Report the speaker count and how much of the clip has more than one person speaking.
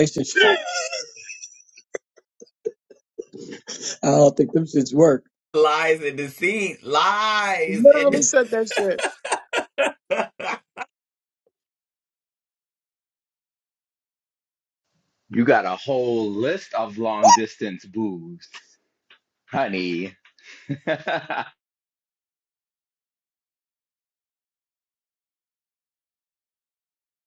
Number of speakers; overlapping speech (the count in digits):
3, about 2%